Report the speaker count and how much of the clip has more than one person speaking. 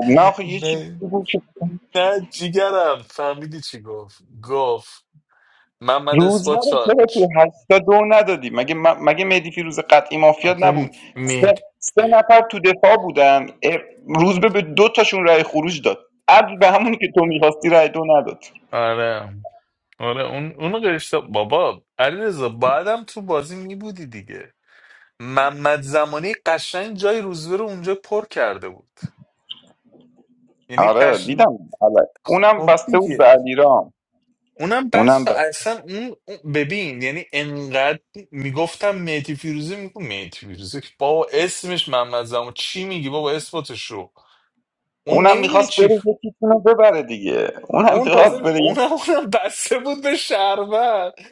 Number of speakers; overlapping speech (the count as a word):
two, about 11%